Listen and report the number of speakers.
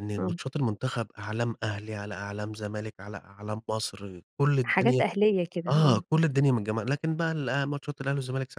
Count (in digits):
2